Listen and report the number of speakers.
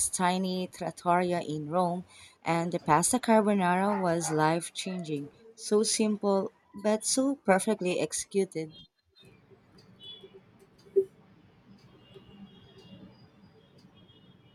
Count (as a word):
one